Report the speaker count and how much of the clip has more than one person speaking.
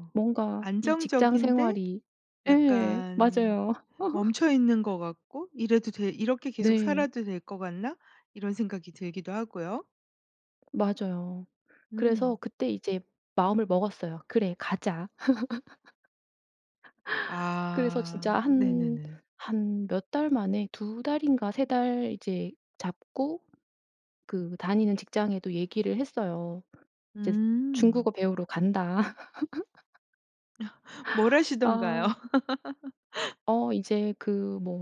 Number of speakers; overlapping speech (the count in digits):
2, about 14%